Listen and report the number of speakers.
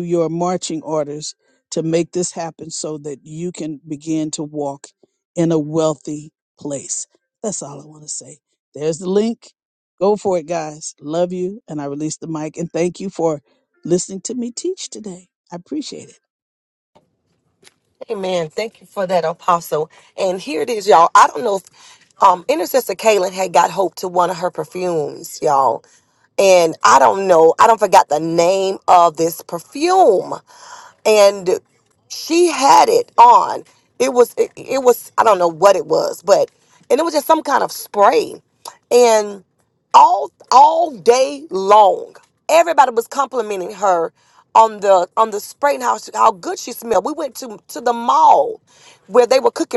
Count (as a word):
two